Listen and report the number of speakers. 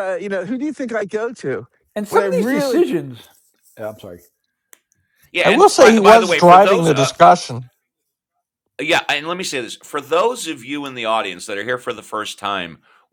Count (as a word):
four